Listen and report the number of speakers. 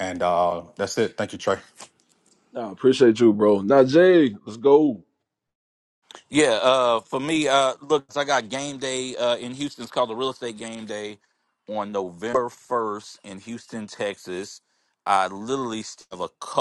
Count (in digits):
3